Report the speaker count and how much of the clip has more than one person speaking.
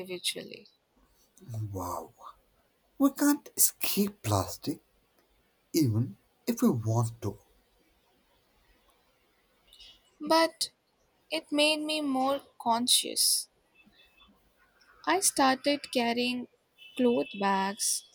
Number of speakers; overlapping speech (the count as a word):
two, no overlap